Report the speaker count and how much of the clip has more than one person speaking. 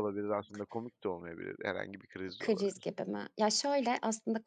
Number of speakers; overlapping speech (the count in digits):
2, about 8%